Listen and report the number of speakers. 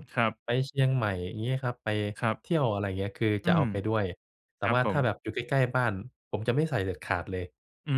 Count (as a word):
two